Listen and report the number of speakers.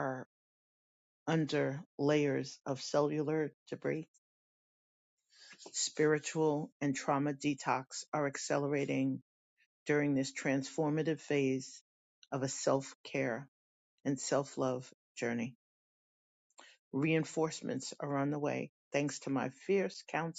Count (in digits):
1